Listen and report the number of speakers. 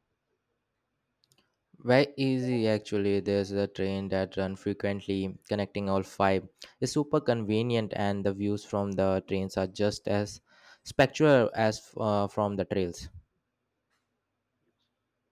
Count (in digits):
1